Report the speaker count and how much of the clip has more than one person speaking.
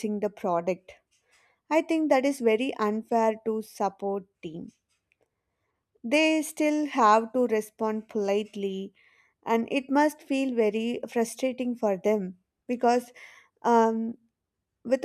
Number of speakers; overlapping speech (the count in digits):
1, no overlap